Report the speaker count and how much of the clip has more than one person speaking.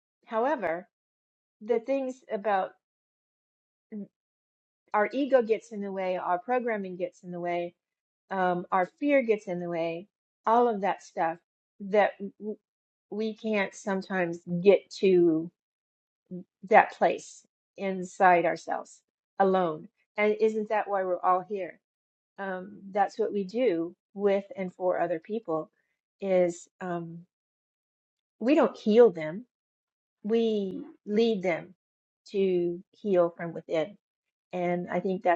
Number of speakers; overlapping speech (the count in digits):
1, no overlap